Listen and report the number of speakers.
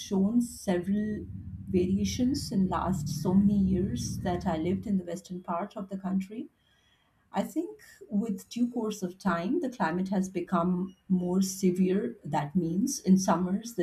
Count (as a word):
one